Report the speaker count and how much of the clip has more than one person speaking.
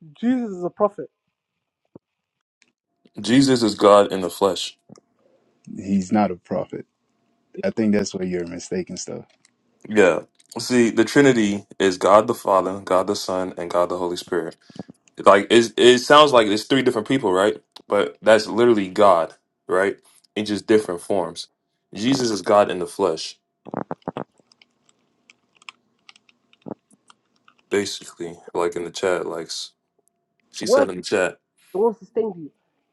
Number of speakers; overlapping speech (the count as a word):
three, about 1%